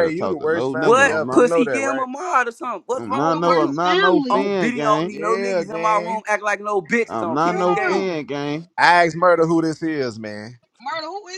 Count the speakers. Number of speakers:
four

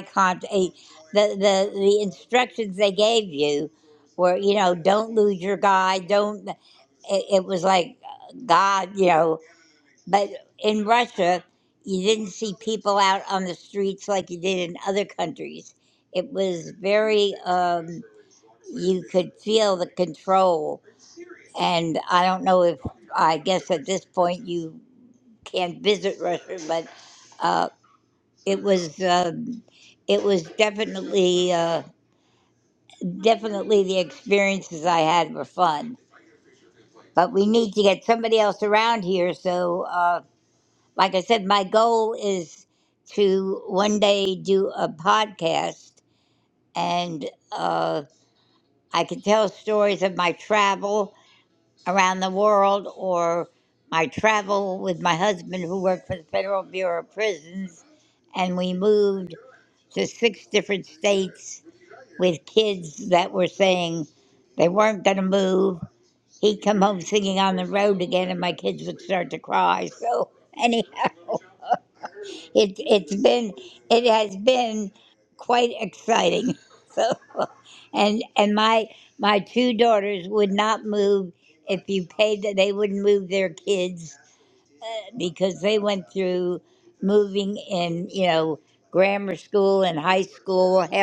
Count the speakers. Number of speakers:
one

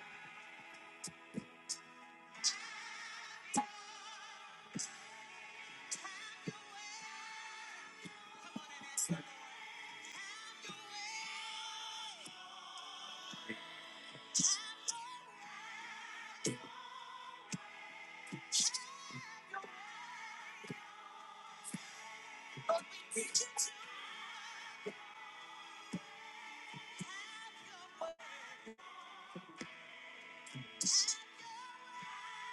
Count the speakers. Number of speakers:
zero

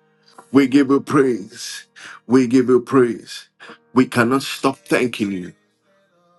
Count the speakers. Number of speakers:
one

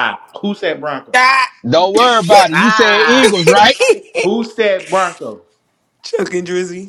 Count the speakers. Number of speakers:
three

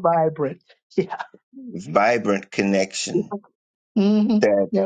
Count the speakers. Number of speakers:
two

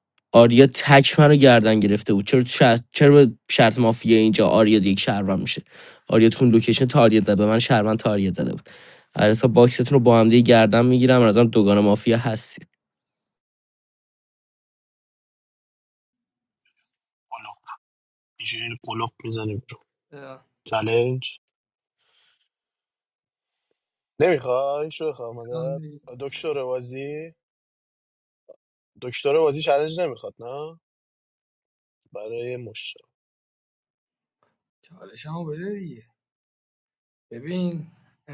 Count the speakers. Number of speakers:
three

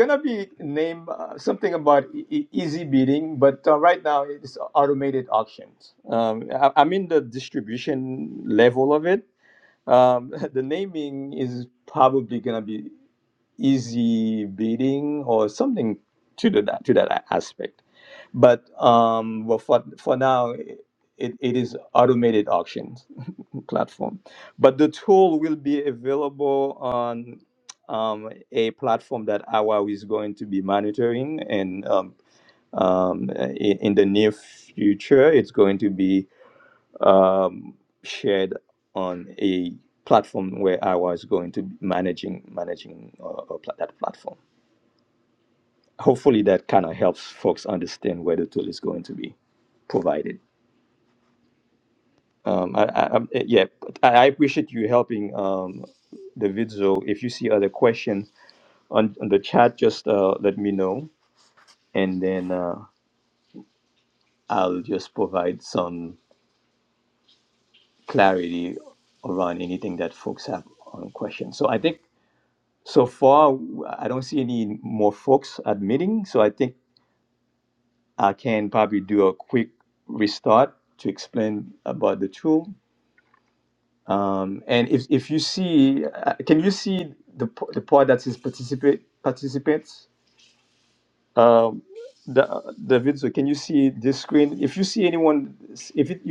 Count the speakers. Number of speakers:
one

